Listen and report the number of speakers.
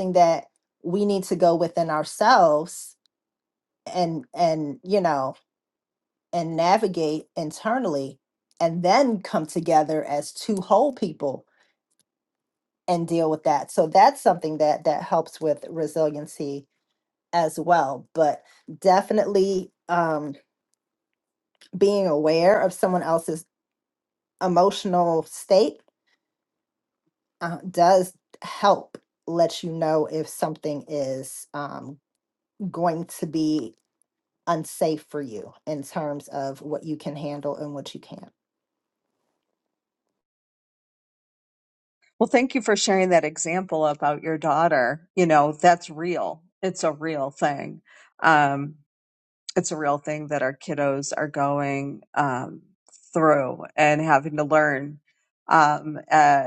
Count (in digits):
2